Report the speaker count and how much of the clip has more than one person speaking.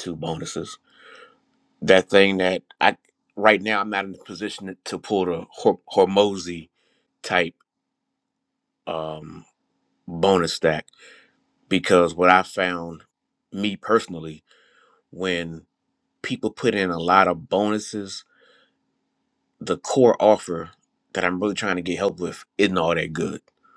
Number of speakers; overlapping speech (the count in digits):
1, no overlap